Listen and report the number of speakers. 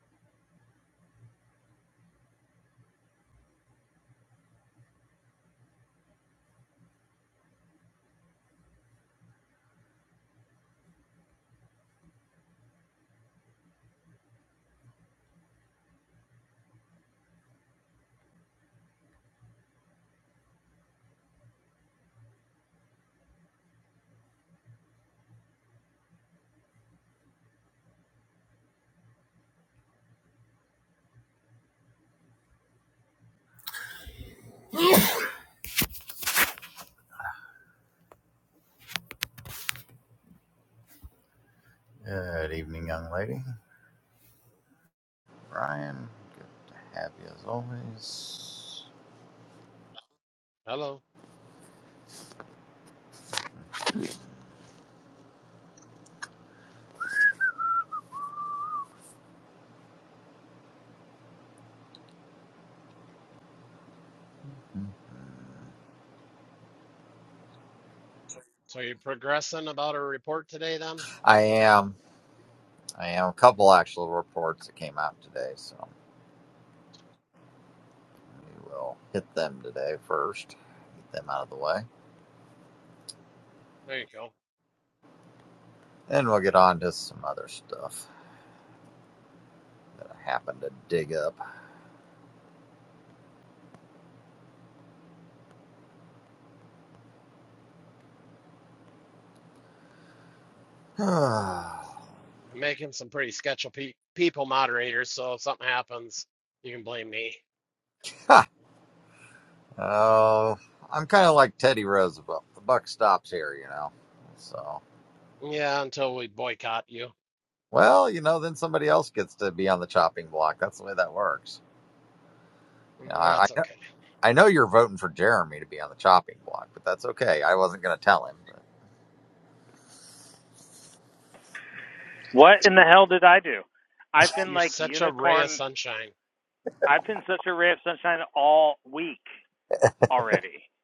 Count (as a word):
three